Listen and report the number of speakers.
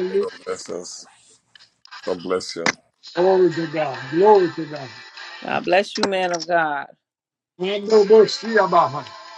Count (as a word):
three